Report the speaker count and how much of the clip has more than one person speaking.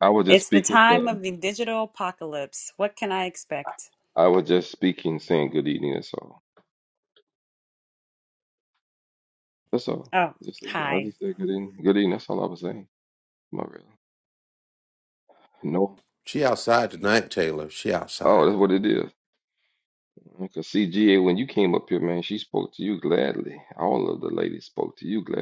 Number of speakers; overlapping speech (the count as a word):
three, about 6%